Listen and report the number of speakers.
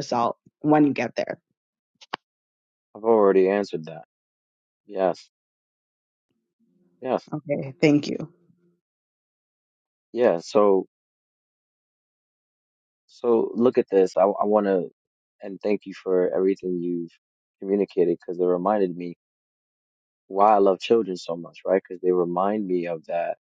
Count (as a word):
two